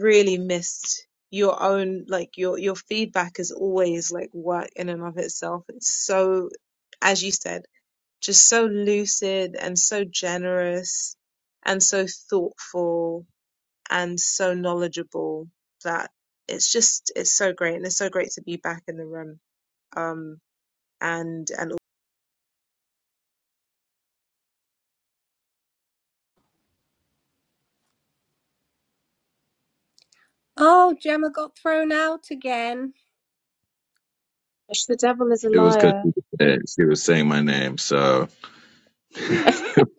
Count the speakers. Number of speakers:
4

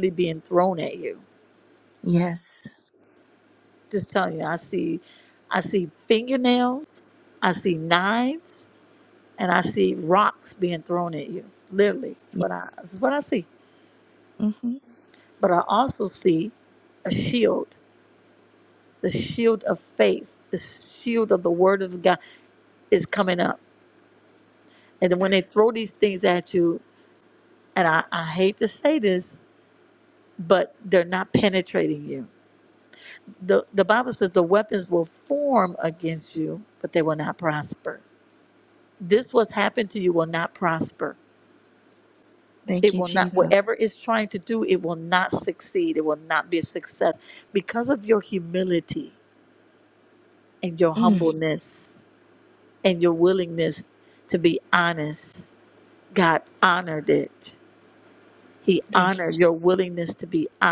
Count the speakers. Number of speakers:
2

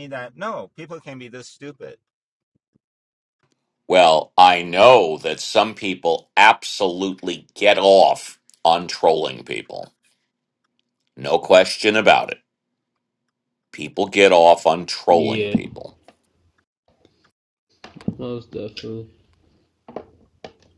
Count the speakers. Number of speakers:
3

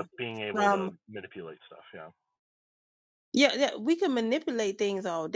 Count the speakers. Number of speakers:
2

